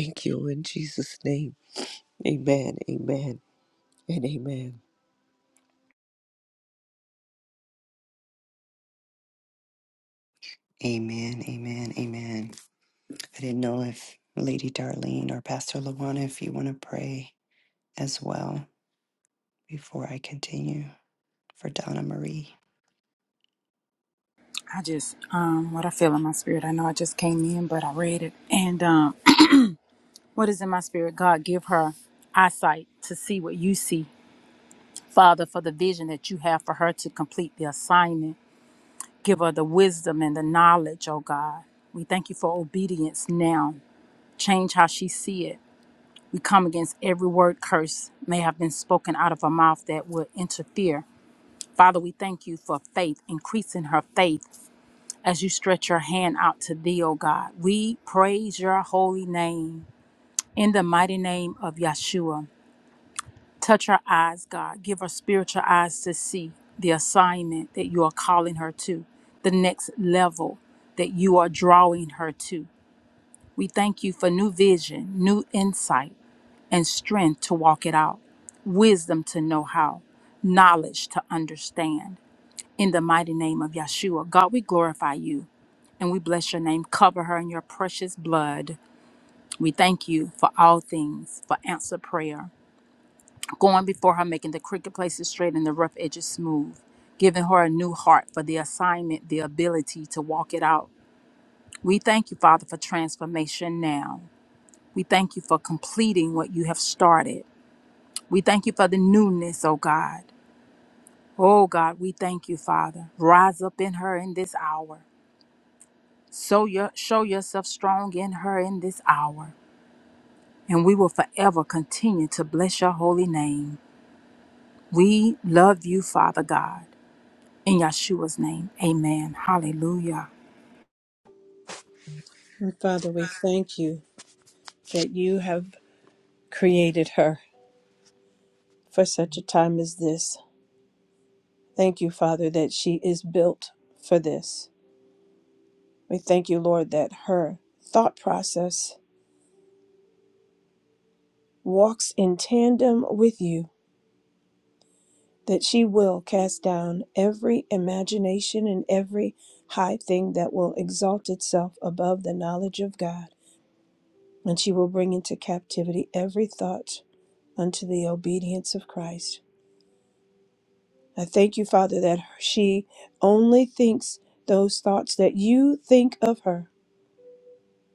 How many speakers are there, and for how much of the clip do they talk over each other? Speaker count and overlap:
4, no overlap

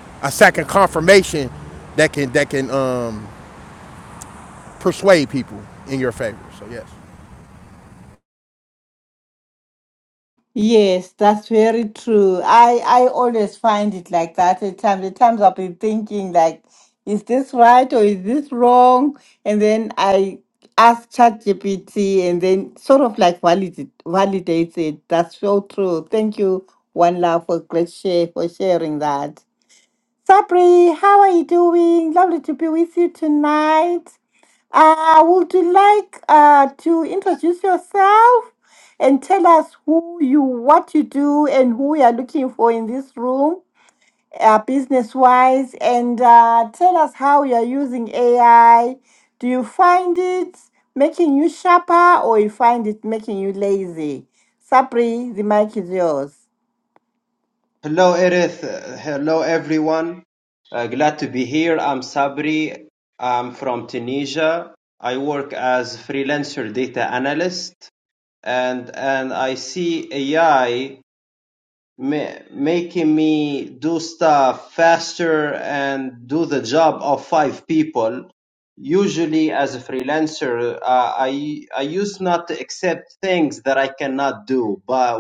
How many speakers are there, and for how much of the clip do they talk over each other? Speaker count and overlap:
3, no overlap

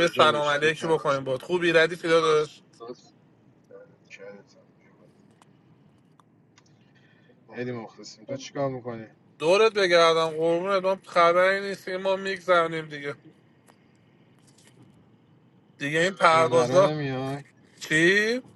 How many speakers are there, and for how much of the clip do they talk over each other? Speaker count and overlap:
2, about 11%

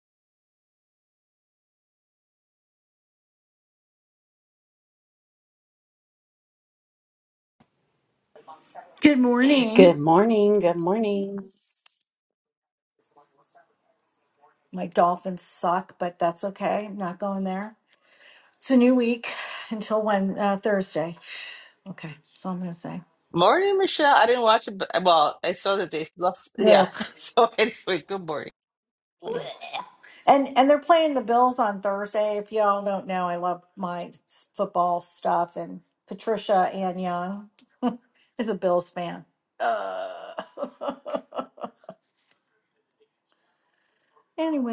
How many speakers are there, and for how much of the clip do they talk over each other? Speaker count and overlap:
3, about 1%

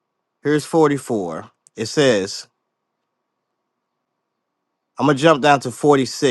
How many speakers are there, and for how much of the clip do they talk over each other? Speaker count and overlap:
1, no overlap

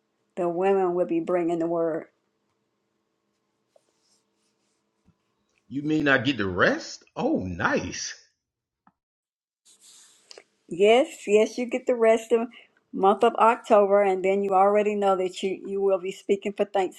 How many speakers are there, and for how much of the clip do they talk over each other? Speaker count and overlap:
2, no overlap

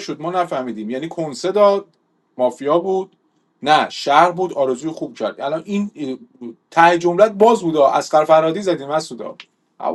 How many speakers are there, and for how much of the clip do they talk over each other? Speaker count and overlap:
1, no overlap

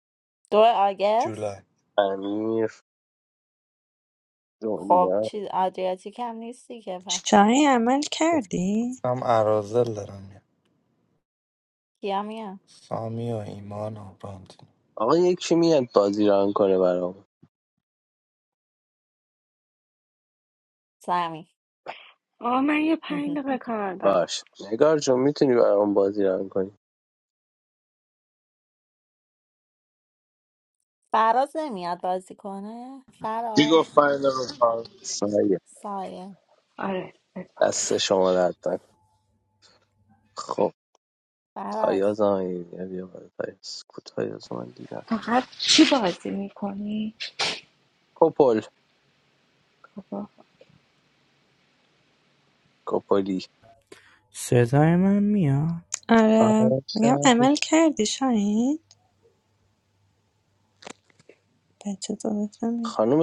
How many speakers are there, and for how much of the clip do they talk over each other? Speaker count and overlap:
8, about 4%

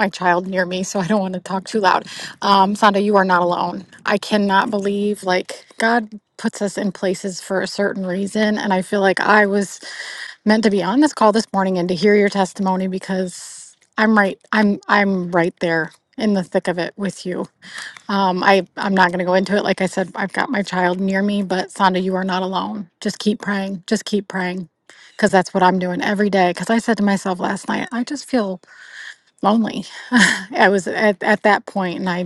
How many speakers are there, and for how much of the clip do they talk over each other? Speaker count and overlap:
1, no overlap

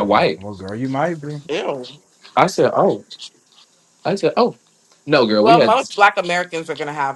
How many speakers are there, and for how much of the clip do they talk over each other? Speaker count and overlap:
3, about 10%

